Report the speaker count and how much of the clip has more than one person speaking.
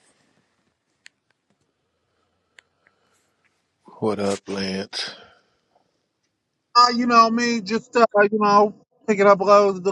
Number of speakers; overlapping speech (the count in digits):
2, no overlap